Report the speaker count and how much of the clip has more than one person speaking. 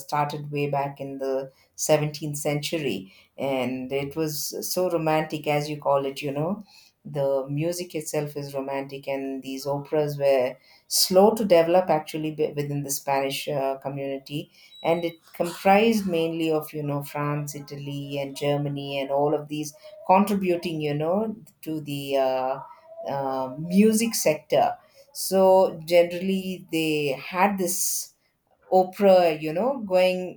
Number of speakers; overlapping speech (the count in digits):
1, no overlap